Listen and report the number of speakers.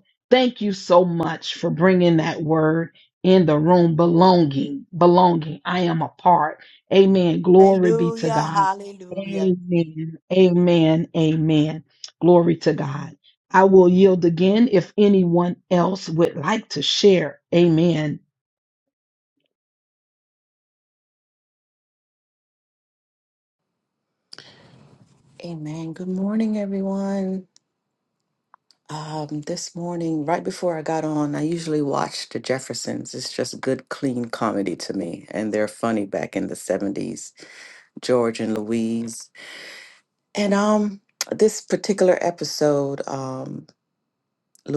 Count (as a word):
three